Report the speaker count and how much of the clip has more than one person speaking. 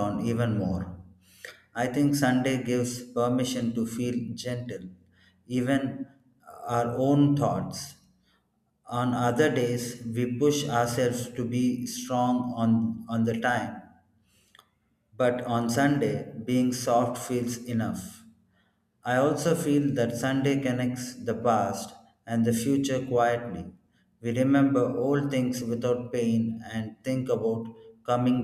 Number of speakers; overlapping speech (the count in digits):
1, no overlap